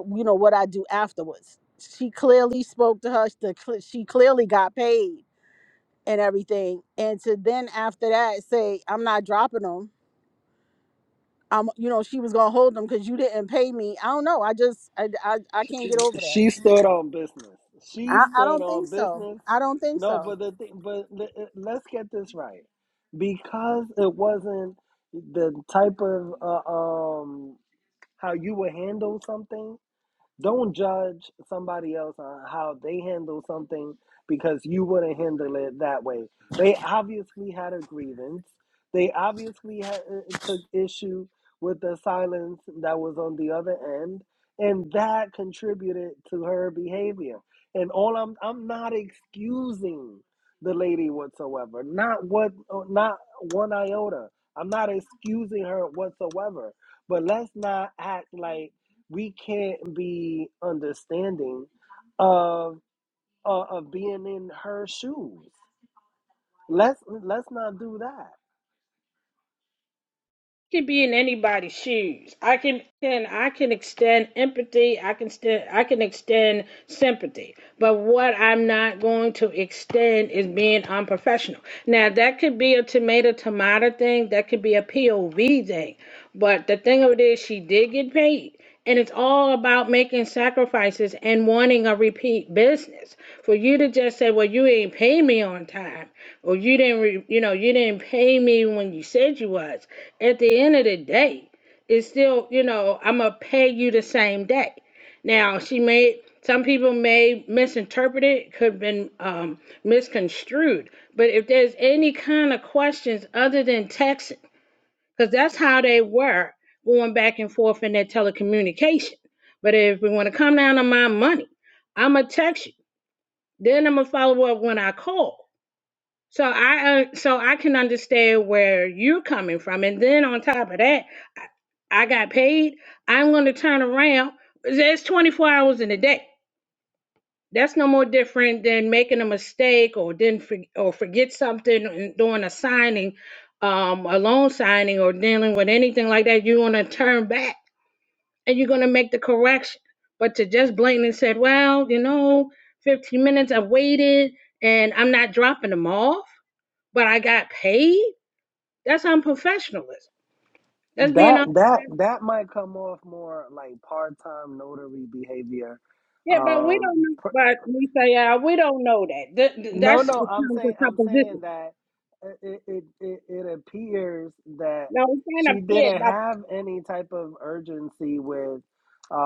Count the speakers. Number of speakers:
3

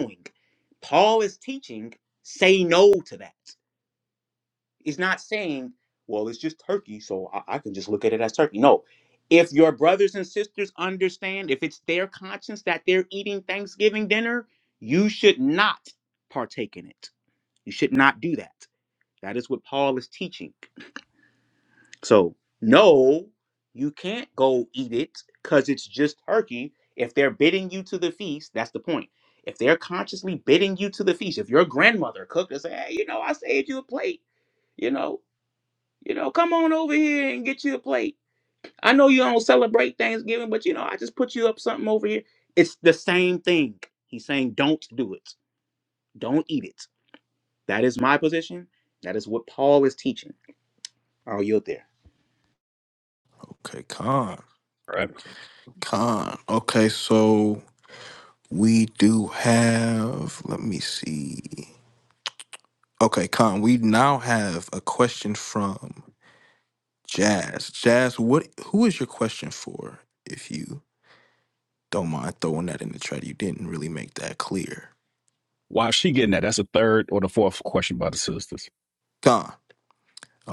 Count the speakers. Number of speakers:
3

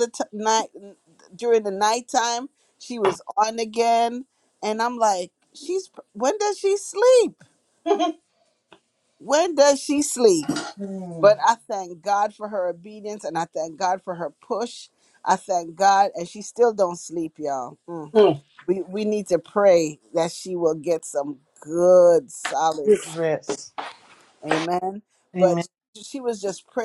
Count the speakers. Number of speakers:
2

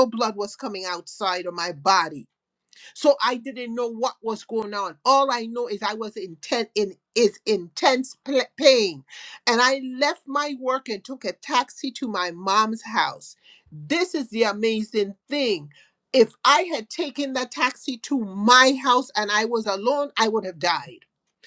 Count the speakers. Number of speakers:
1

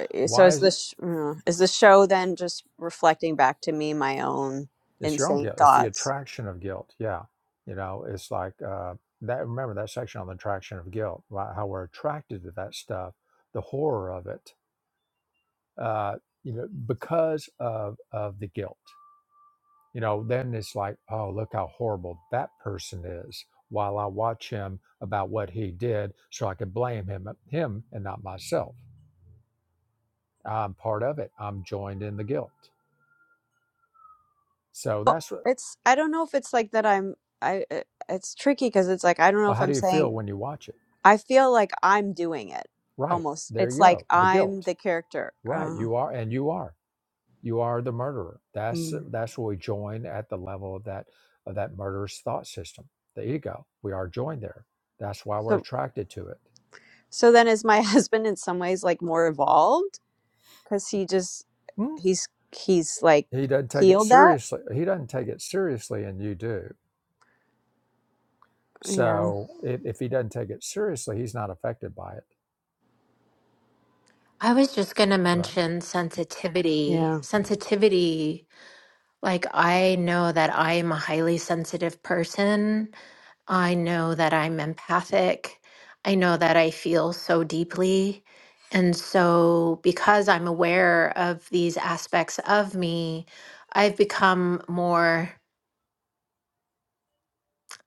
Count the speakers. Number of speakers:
3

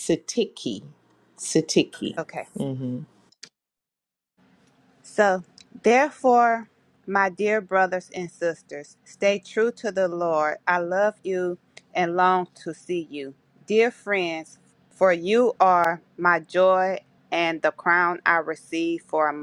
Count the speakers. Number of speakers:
2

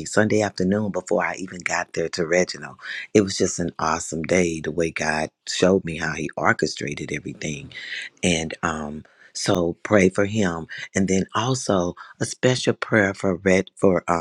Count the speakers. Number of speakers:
1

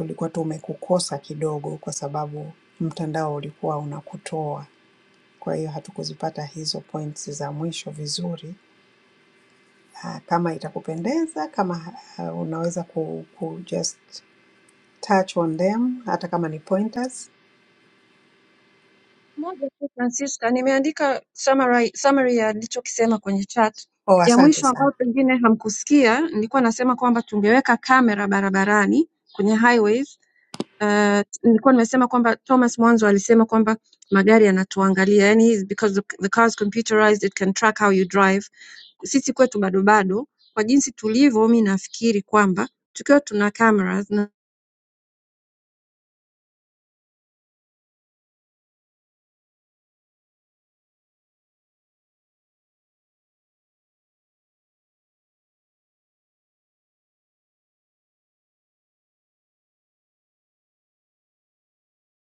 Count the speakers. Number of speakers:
2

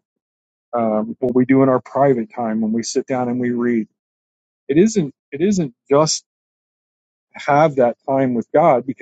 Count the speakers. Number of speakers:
1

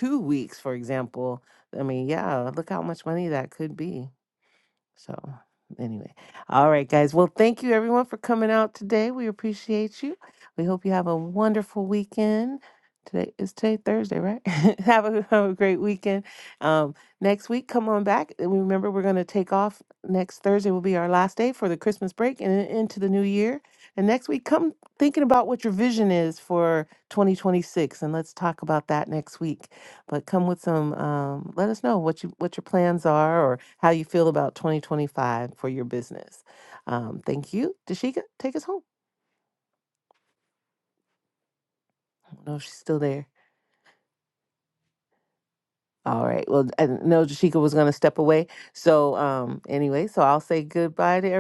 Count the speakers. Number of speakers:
1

